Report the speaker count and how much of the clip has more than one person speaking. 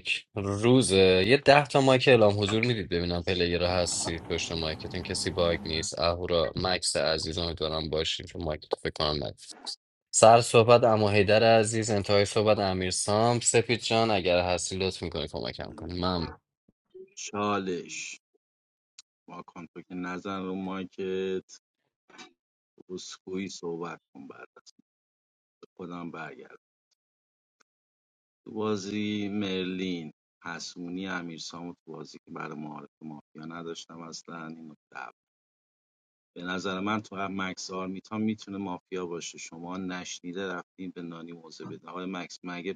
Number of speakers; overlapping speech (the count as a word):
two, no overlap